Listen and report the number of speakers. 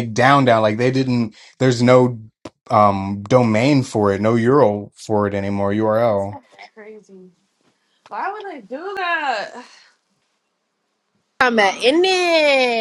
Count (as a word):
three